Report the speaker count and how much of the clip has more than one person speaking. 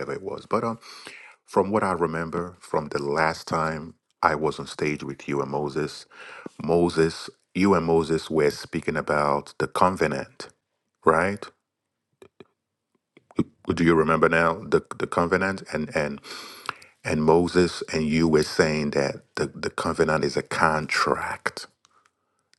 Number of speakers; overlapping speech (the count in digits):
1, no overlap